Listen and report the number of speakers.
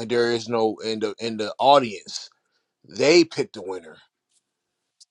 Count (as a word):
one